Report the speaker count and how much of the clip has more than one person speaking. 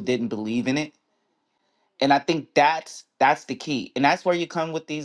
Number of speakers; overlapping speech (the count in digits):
1, no overlap